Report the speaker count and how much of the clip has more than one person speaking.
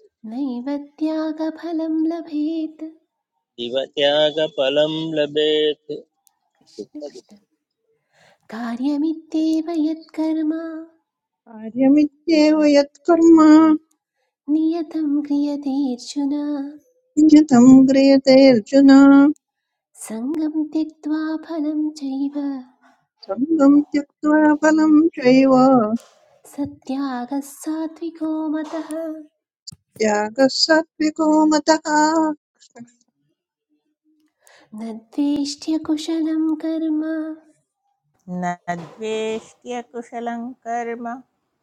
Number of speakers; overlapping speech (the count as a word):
four, no overlap